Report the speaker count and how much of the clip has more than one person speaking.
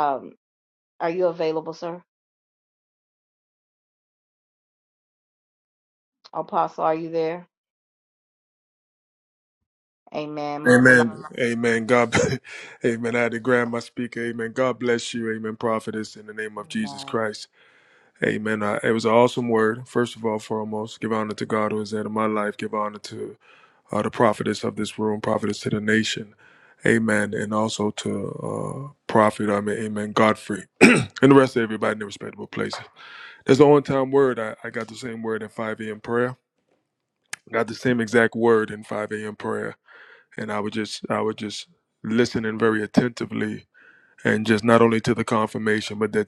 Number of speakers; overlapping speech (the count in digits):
2, about 1%